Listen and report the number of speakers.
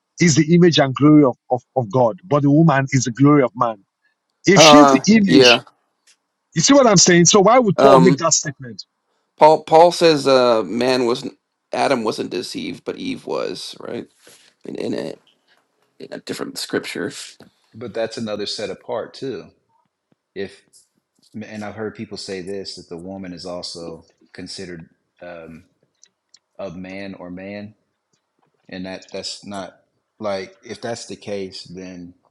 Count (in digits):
3